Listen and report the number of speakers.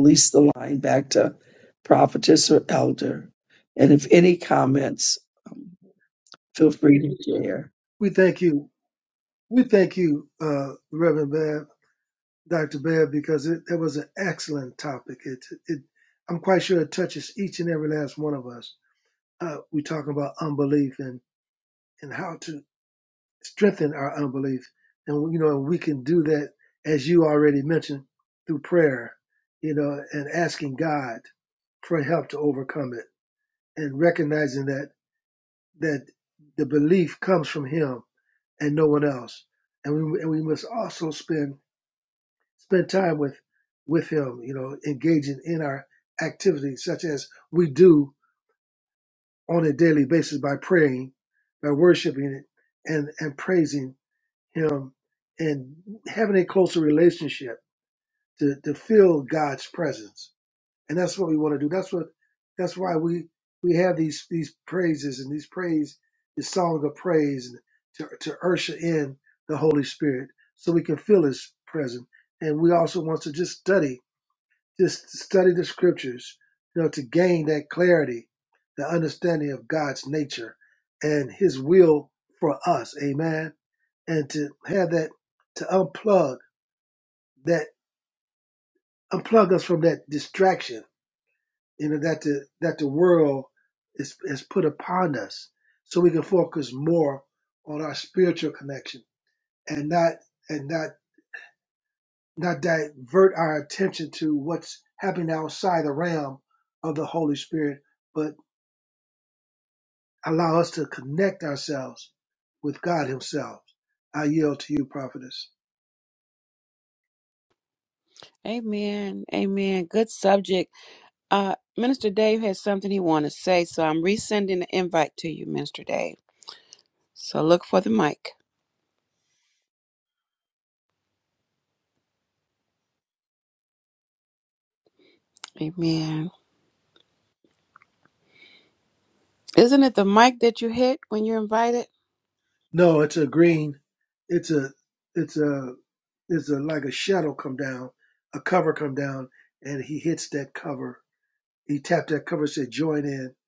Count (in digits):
3